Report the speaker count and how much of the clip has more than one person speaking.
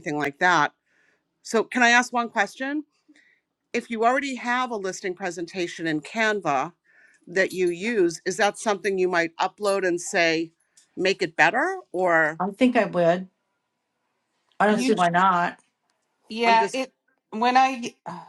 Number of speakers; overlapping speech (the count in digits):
3, about 3%